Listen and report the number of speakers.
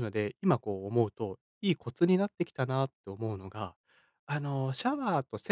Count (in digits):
1